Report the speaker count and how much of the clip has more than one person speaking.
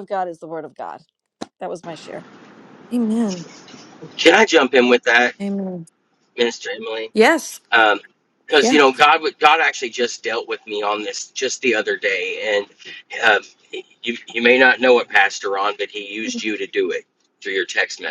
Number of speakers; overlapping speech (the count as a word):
three, about 1%